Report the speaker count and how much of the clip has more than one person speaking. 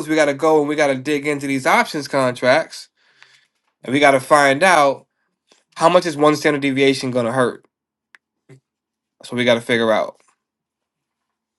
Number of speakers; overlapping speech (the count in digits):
1, no overlap